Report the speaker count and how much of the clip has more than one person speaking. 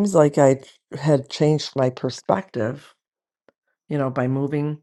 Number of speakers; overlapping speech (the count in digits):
1, no overlap